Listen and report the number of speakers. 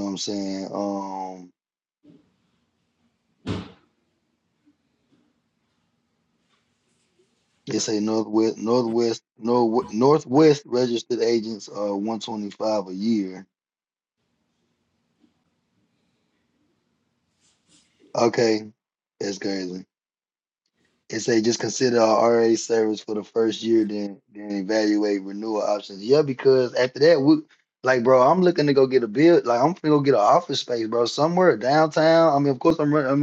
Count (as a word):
one